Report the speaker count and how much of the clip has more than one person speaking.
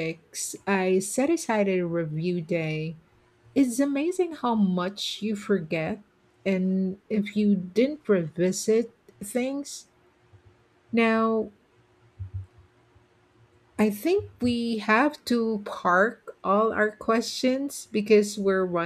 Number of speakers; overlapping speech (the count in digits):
1, no overlap